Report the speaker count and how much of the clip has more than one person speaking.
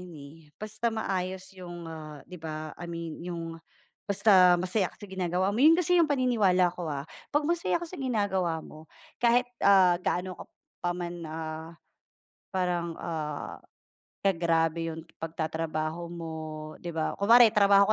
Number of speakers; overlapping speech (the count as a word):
one, no overlap